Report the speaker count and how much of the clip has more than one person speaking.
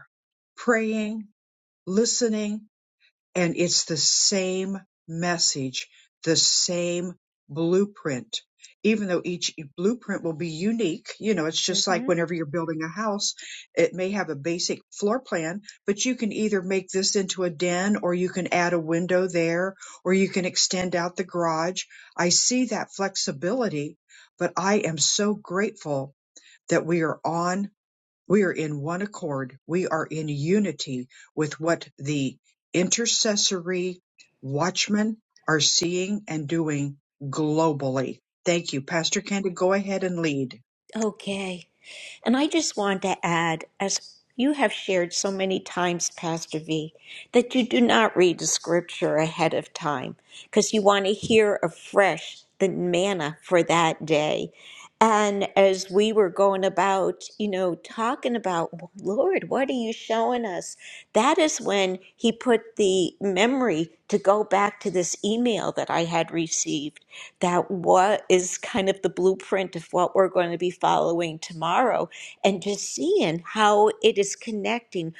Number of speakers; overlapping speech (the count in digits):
2, about 1%